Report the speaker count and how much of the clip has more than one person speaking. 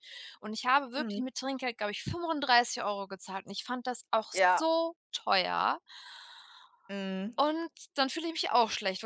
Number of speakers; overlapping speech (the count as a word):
two, about 7%